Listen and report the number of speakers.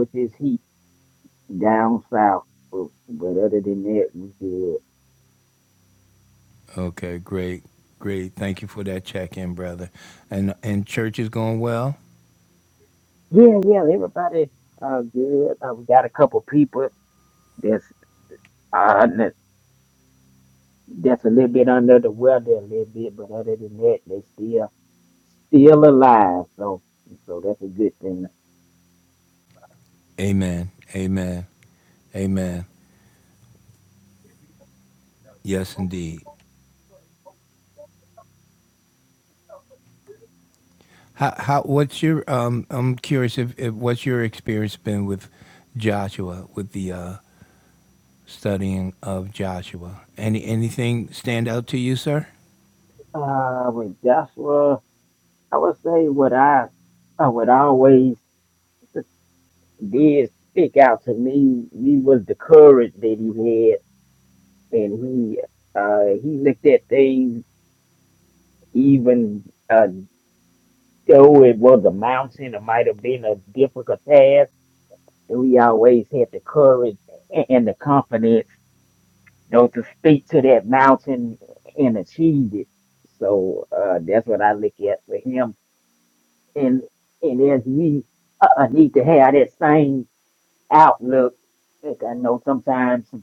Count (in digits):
2